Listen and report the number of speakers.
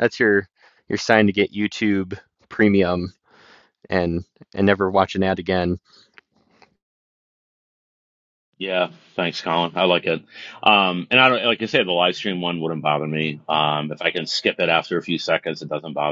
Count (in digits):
2